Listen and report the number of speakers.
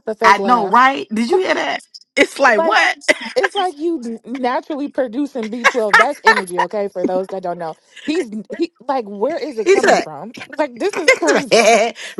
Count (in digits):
2